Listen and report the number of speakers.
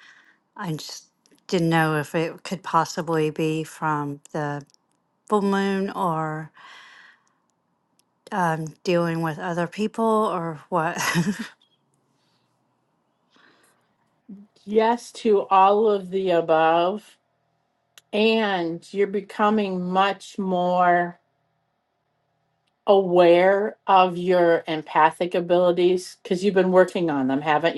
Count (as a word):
two